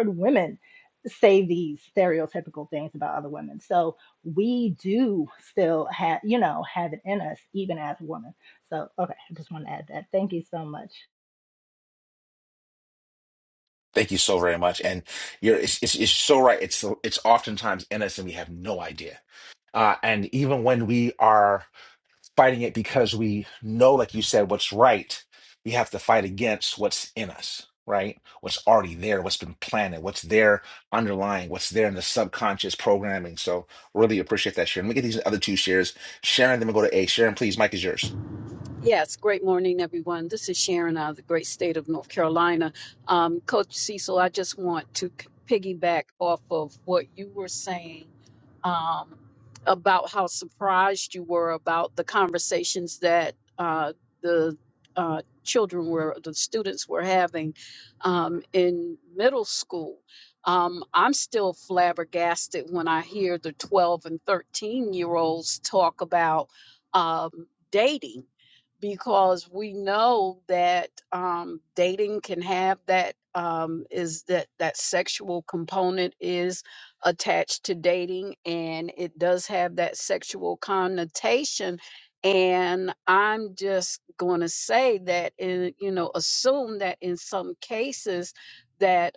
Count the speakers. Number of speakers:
3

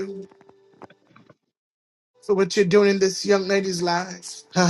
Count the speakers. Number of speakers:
1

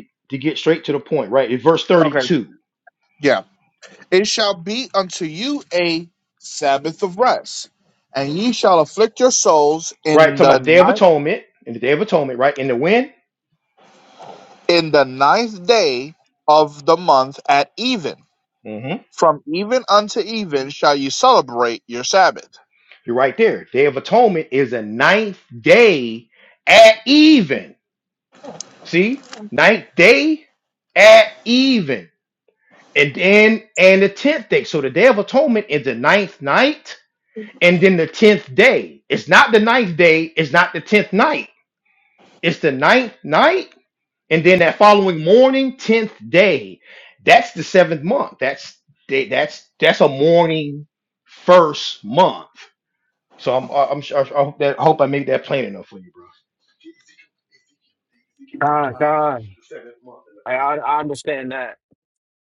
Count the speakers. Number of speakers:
3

